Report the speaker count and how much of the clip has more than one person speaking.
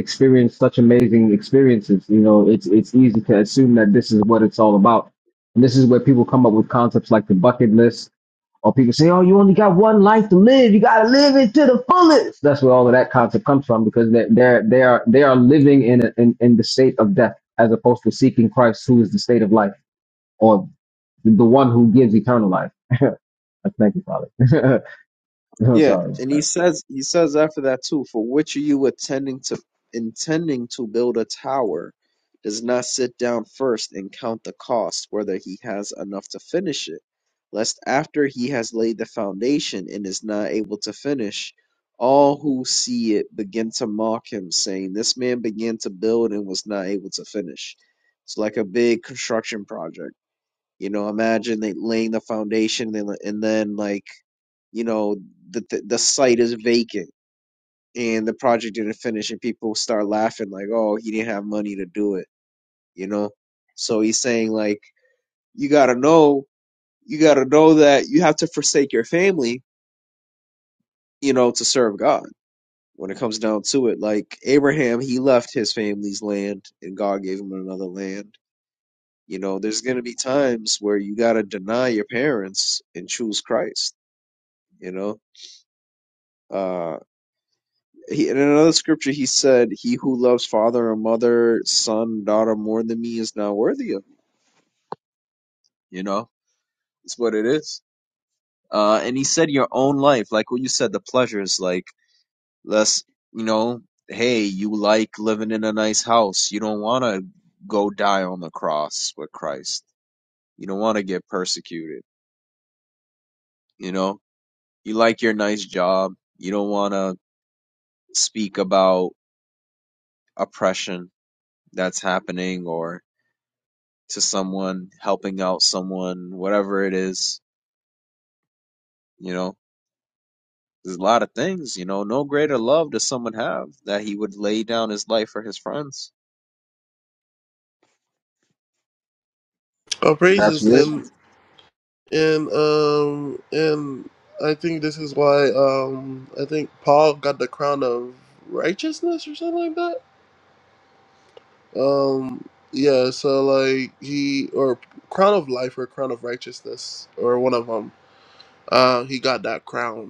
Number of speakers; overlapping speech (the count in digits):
3, about 1%